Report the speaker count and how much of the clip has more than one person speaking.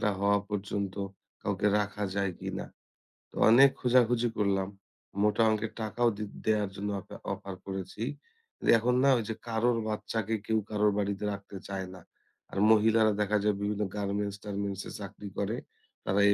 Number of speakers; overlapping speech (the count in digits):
1, no overlap